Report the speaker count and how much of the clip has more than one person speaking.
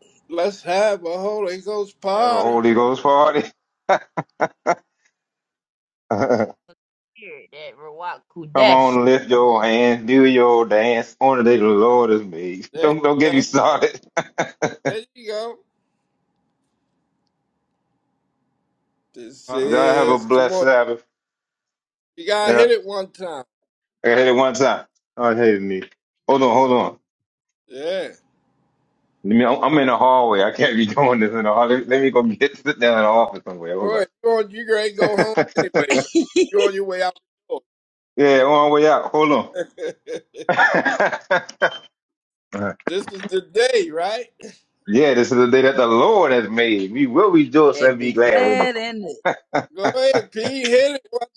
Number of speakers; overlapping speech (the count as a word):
four, about 8%